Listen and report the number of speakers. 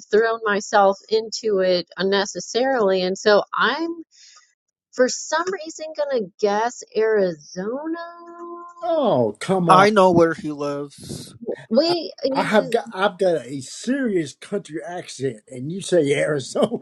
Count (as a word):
three